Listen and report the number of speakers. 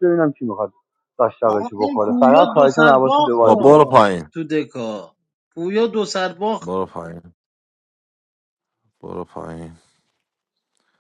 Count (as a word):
three